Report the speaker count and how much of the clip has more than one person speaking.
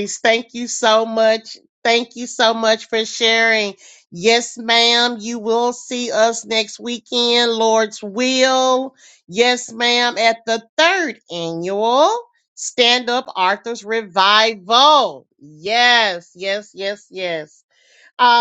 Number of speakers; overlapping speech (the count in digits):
1, no overlap